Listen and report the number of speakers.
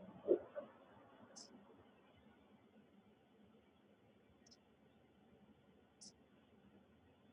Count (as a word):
zero